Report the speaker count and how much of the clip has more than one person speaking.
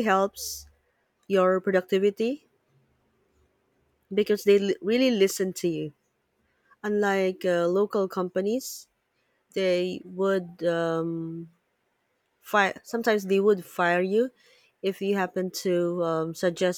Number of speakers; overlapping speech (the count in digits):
1, no overlap